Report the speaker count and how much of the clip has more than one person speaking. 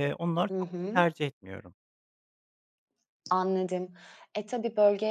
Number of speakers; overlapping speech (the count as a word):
two, about 11%